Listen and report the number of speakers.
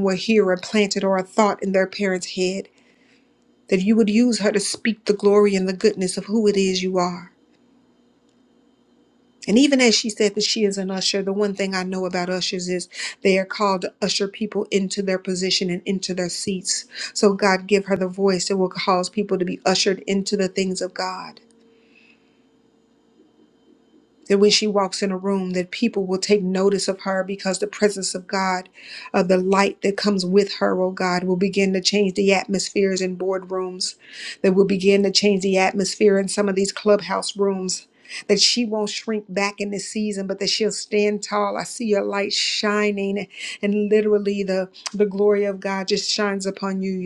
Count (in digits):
1